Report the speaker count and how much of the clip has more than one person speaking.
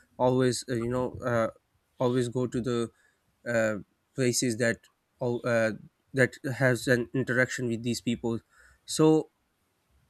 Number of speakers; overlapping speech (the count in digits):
1, no overlap